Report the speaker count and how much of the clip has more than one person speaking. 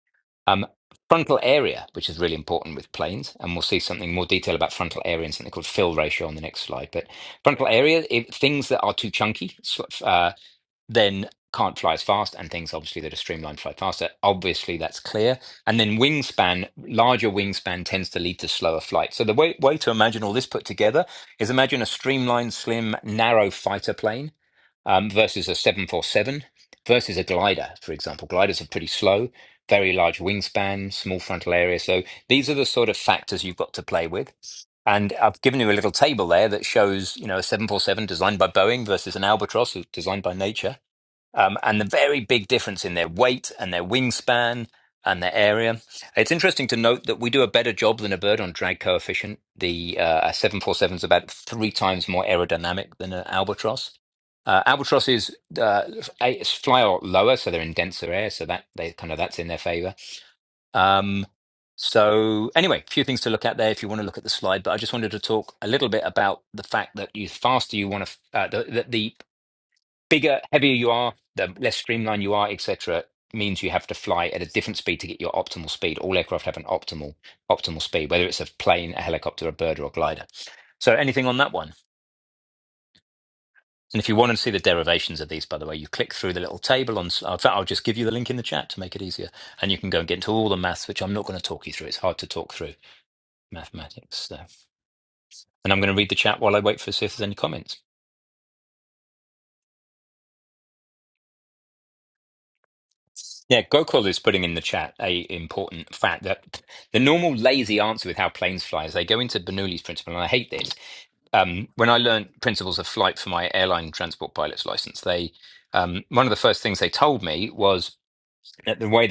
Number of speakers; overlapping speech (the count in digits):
1, no overlap